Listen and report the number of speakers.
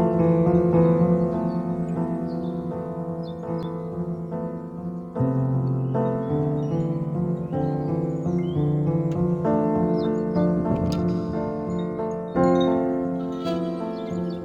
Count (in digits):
0